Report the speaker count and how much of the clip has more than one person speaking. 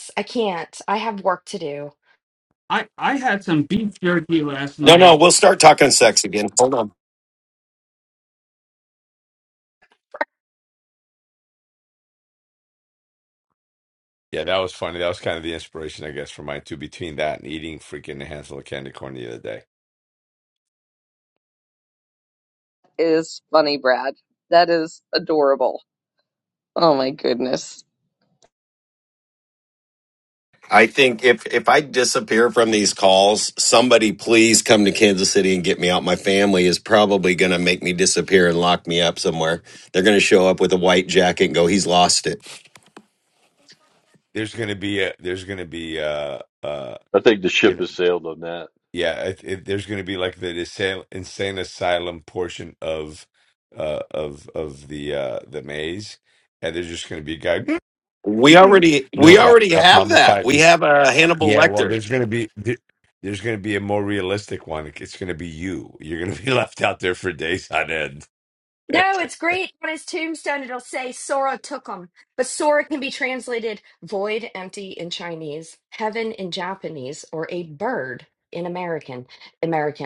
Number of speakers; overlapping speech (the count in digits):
6, about 3%